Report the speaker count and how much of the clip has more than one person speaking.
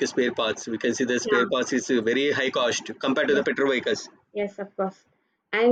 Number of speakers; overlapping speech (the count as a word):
two, about 7%